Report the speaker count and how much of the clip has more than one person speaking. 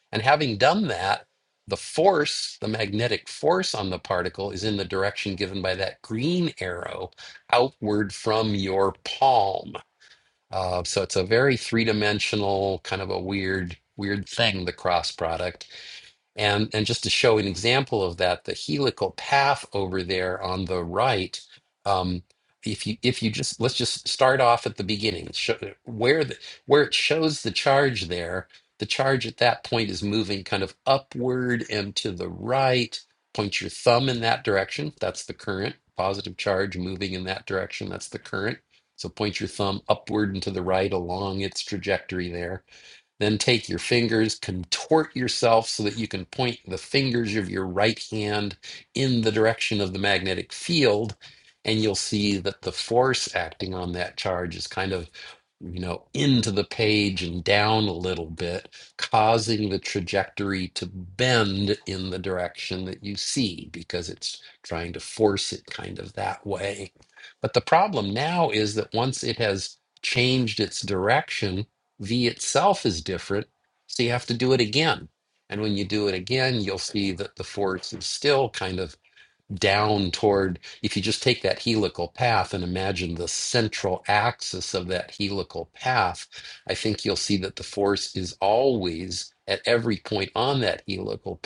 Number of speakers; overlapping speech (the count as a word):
one, no overlap